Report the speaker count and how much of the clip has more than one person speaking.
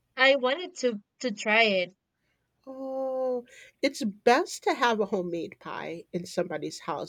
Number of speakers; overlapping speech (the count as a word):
two, no overlap